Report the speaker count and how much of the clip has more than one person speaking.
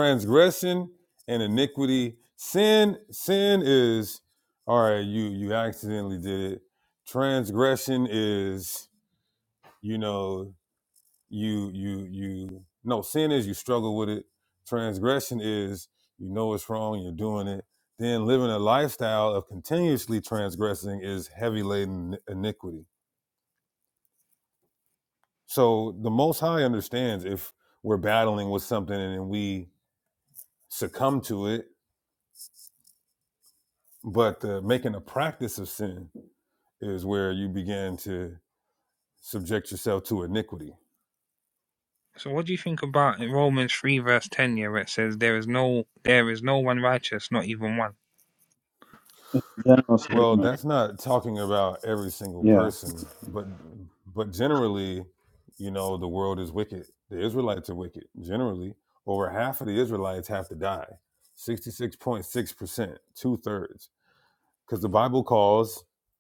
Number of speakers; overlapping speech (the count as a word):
three, about 1%